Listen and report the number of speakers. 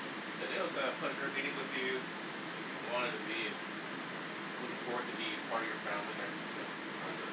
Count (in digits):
1